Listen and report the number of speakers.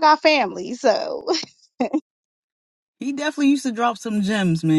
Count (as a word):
two